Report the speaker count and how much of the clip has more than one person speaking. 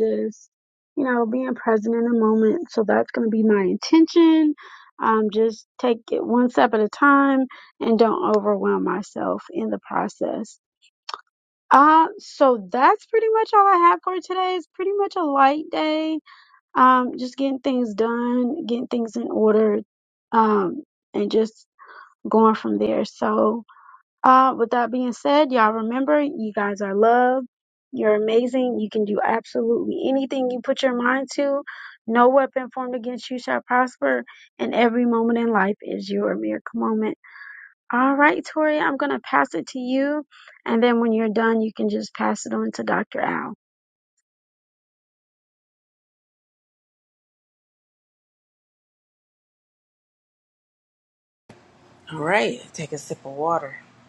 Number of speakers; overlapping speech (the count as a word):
two, no overlap